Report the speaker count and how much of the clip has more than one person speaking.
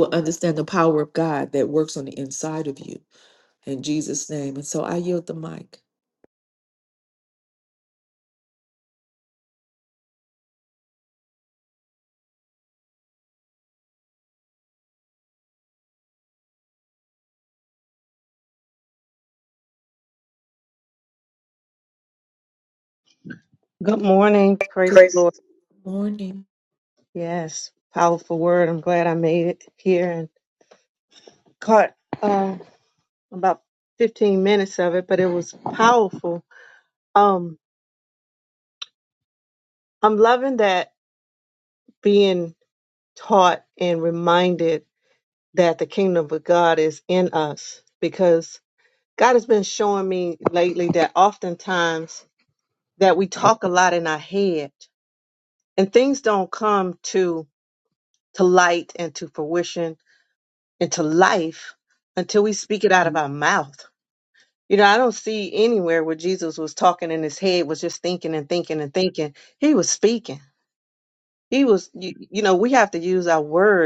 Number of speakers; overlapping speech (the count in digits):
2, no overlap